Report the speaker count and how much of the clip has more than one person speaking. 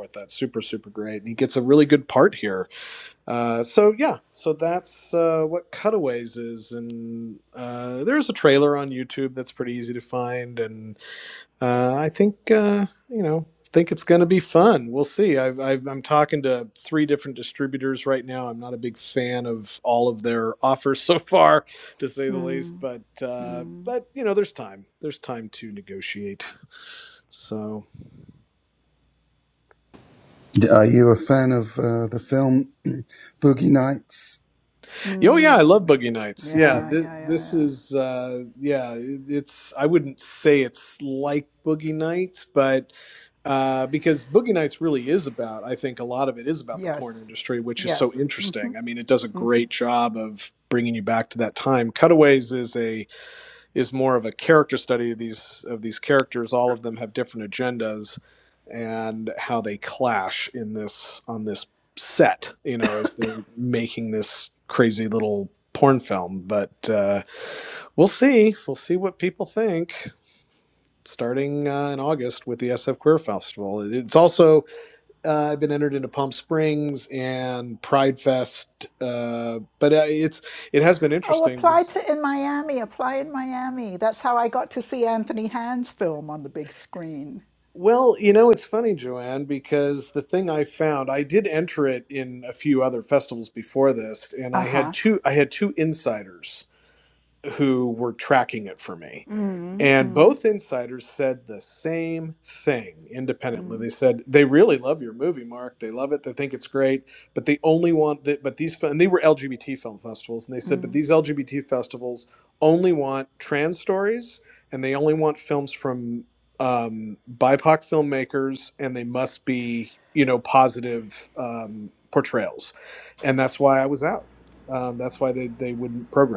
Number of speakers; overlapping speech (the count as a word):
three, about 2%